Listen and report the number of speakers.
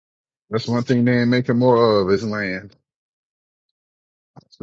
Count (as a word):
one